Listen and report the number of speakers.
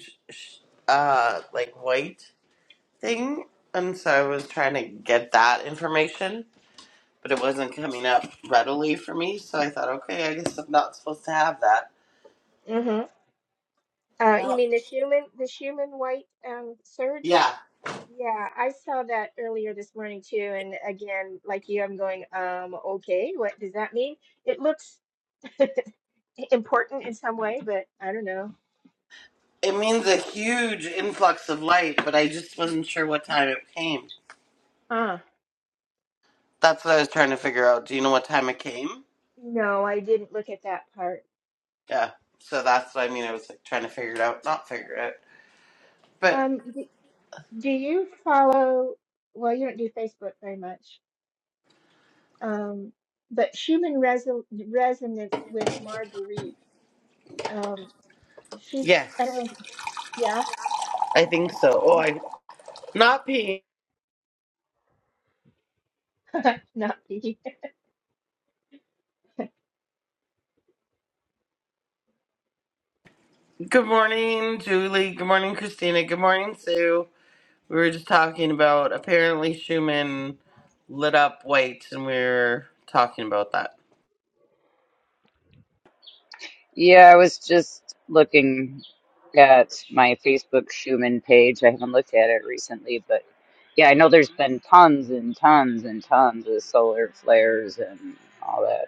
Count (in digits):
3